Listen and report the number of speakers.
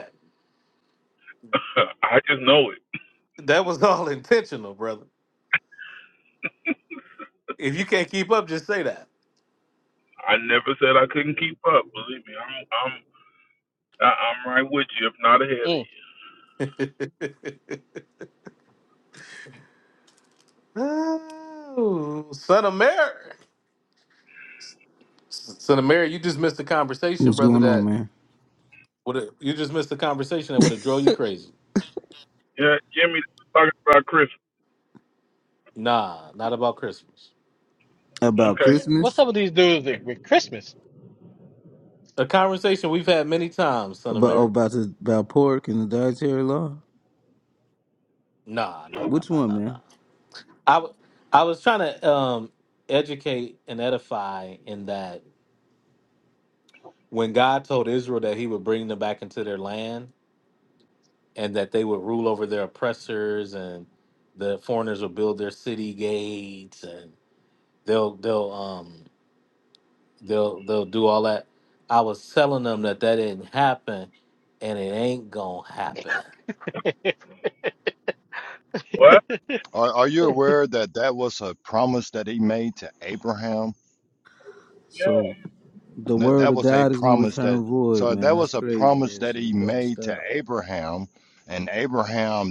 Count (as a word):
five